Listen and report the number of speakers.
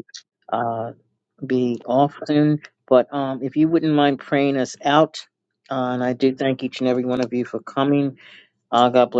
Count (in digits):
1